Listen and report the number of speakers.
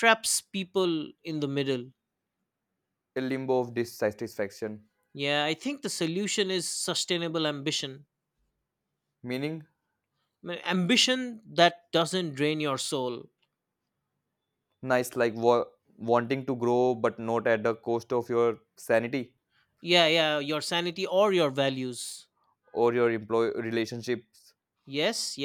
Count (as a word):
two